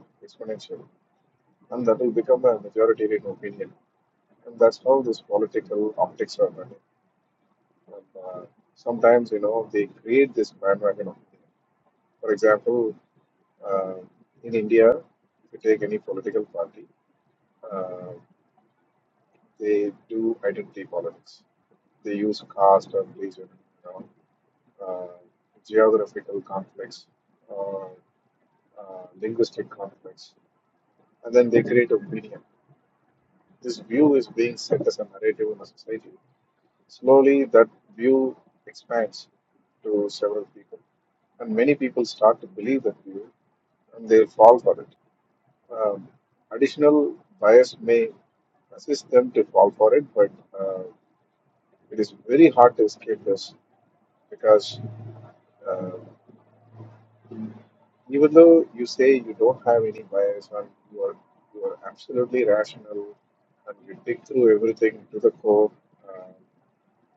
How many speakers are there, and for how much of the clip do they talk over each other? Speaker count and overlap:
1, no overlap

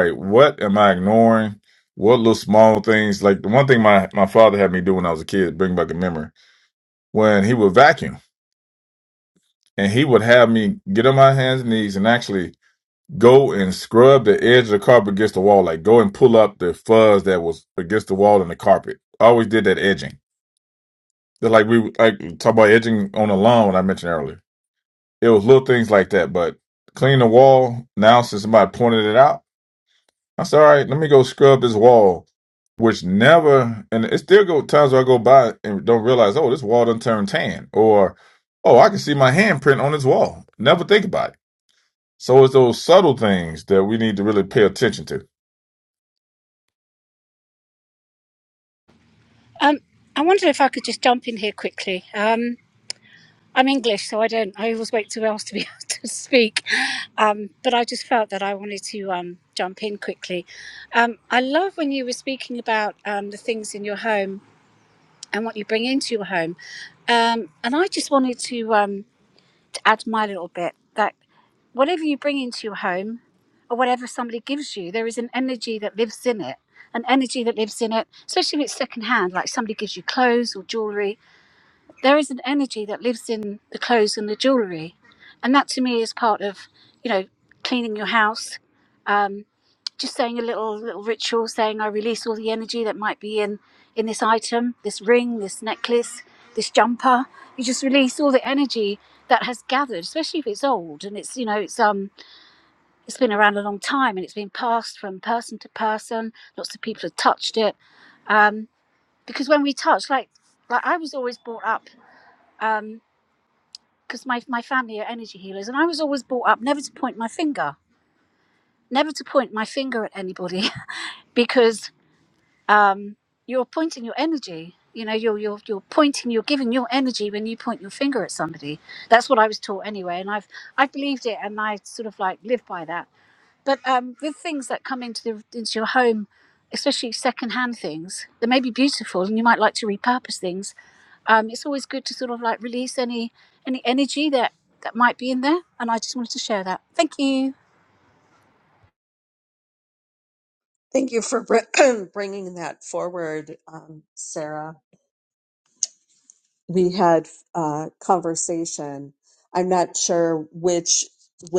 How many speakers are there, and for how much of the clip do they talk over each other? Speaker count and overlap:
3, no overlap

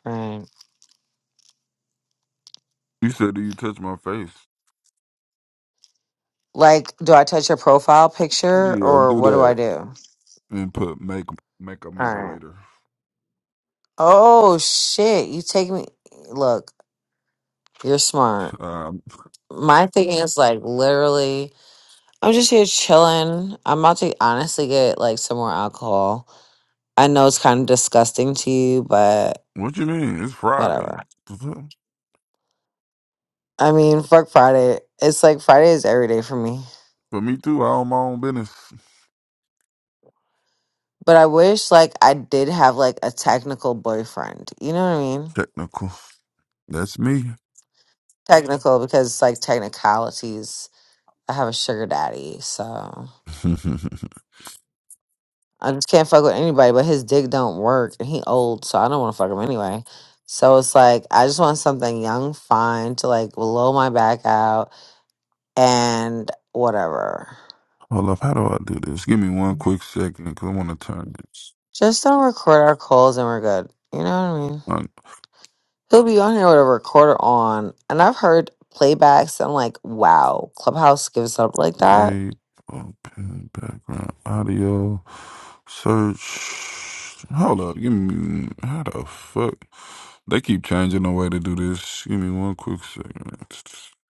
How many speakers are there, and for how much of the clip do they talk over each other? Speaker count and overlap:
2, about 2%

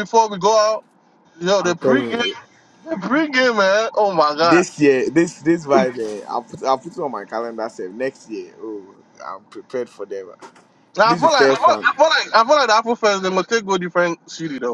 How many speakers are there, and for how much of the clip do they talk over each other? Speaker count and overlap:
2, about 12%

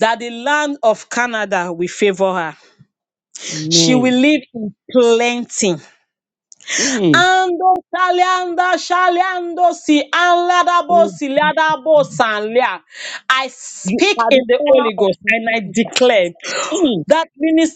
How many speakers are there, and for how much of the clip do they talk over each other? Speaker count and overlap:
2, about 14%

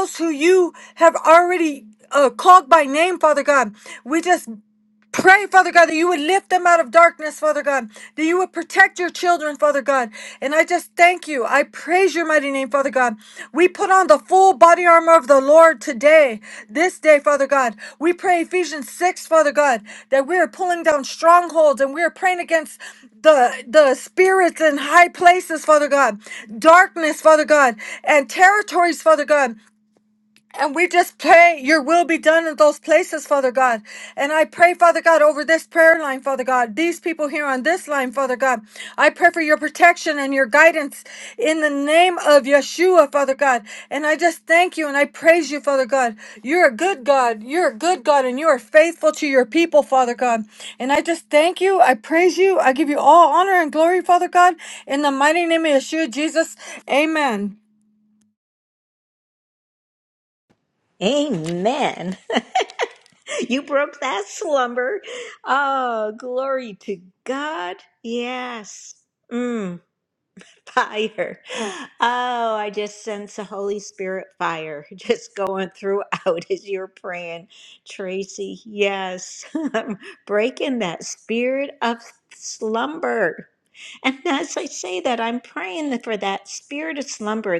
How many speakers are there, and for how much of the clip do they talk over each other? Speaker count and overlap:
2, no overlap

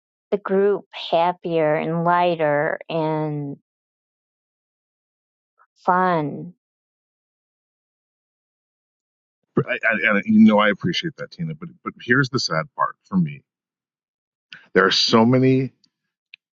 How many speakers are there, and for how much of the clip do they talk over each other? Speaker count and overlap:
2, no overlap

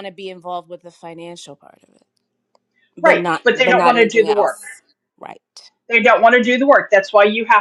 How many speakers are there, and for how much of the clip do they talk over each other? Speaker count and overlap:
2, about 19%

